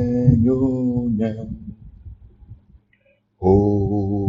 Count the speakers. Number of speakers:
1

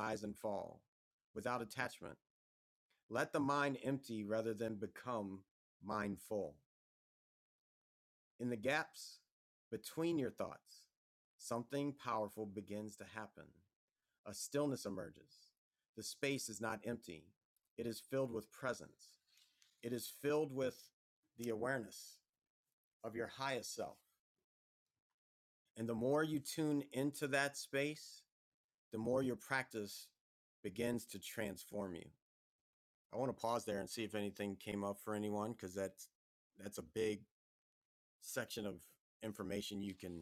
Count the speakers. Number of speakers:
1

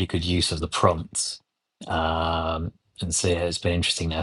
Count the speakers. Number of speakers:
1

